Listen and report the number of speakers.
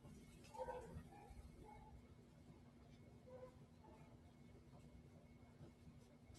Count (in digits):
0